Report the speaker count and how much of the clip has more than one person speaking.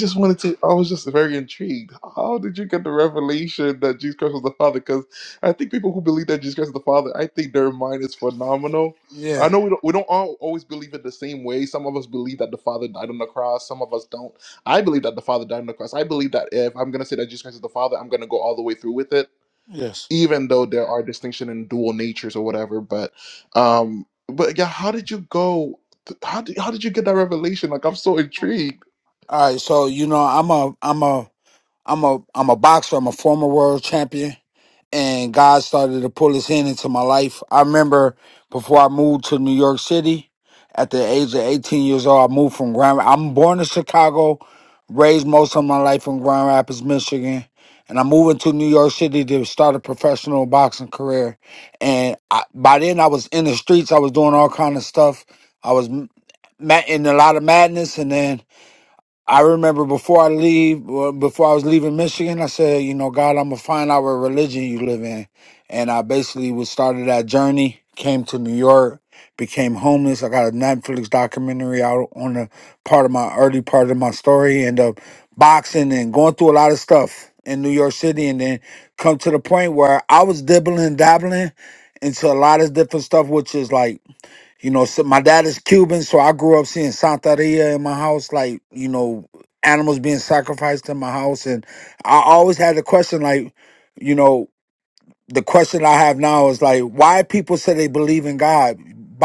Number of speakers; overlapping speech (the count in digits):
2, under 1%